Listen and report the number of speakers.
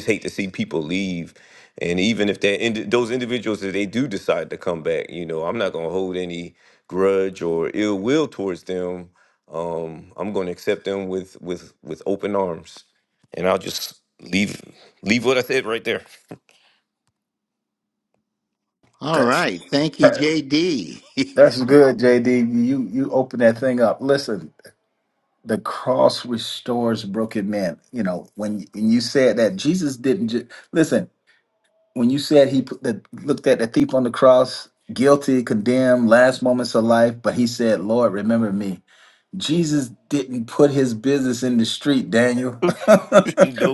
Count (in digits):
3